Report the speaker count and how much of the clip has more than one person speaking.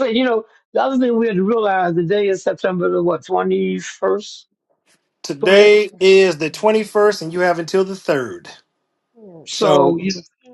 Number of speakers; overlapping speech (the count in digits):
2, about 6%